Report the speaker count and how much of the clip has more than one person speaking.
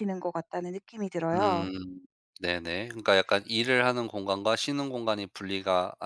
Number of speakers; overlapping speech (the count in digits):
2, about 6%